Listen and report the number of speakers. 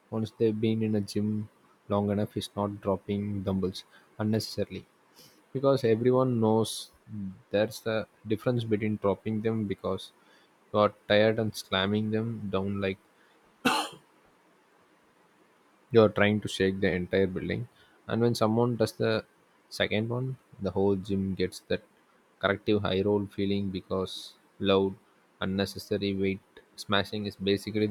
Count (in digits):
1